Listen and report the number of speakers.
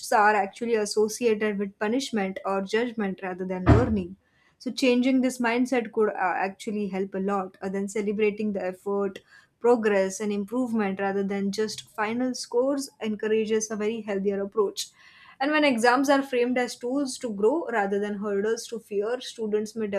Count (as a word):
one